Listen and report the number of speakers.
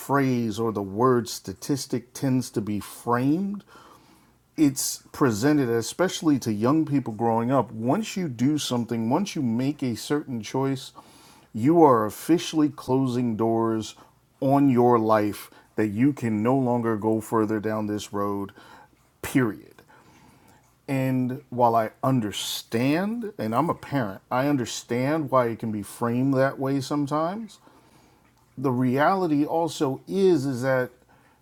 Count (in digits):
1